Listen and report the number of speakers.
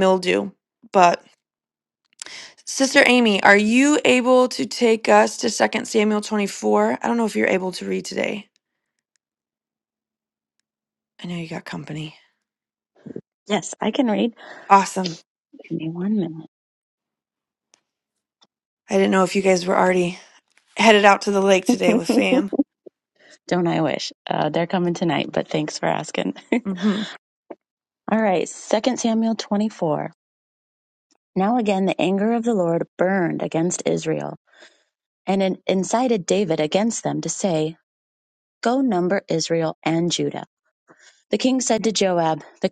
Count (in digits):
2